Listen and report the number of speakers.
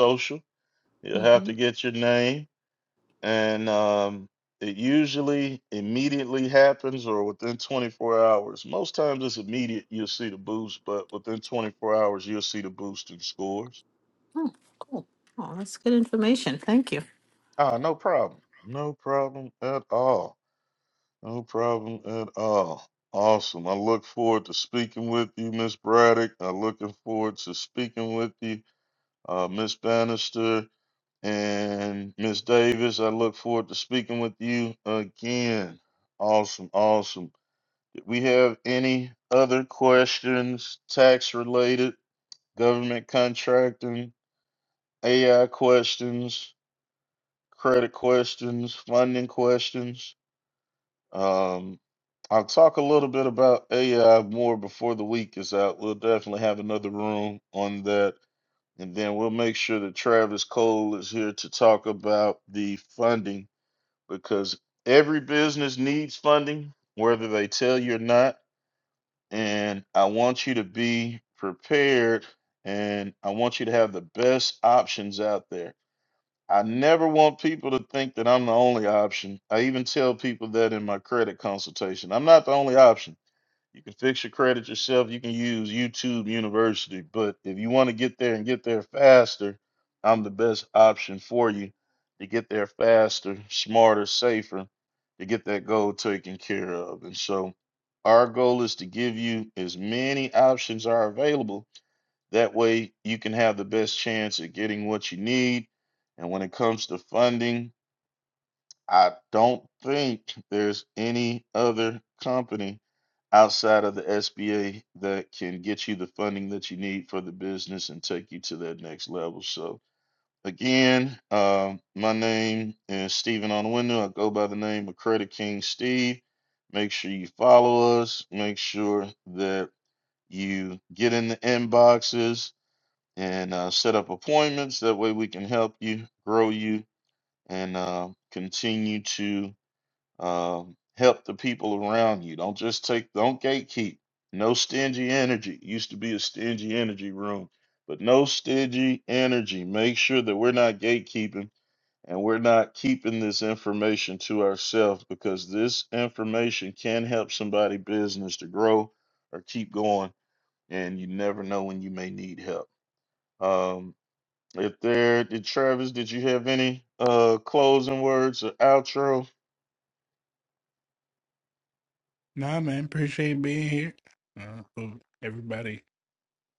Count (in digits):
3